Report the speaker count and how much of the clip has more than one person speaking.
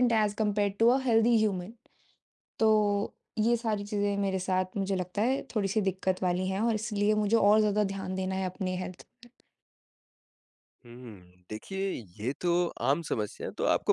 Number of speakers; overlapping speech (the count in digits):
2, no overlap